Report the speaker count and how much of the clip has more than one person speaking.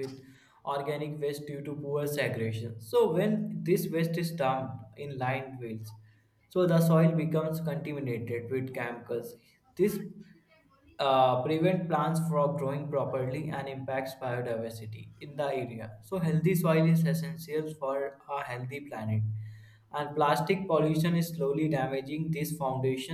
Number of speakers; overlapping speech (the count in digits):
1, no overlap